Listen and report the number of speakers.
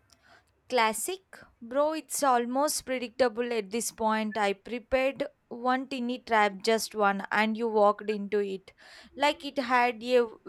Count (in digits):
1